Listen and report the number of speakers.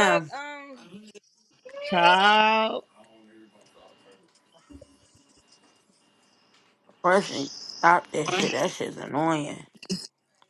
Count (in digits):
2